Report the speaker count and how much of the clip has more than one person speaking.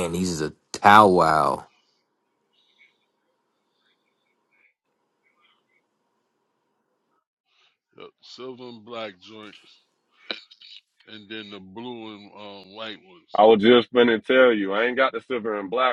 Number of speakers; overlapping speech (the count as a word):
three, no overlap